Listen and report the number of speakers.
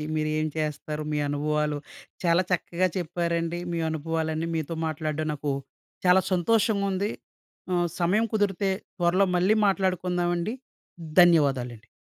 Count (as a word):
one